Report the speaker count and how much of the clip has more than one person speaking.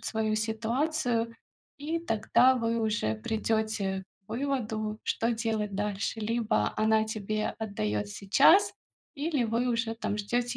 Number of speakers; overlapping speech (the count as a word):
one, no overlap